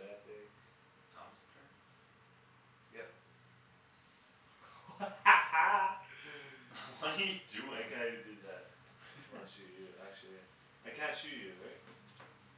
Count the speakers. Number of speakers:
2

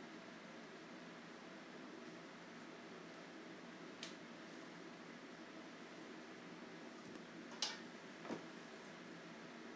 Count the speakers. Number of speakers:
0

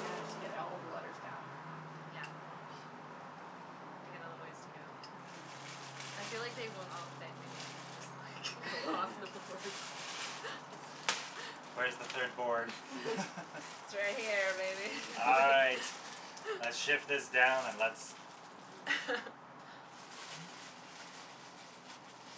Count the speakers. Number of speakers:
3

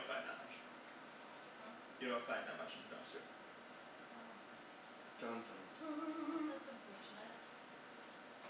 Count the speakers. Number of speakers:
3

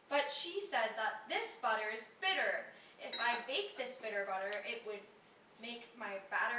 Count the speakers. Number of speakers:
1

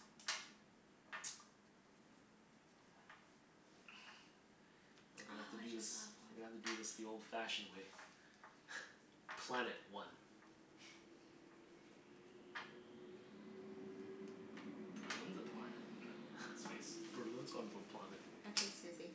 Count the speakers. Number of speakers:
3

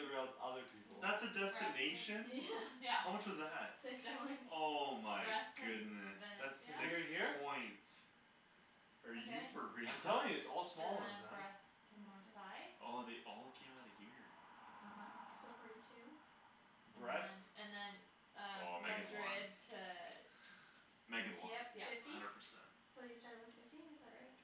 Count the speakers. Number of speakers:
4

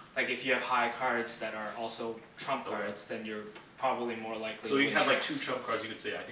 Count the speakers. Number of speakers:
2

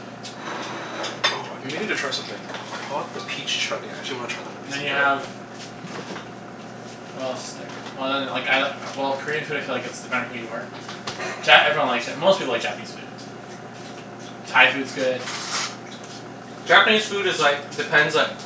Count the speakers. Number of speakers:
3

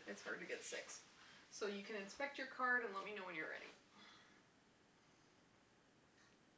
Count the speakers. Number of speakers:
1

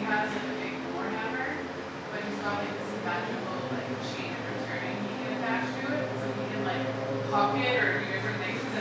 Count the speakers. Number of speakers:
1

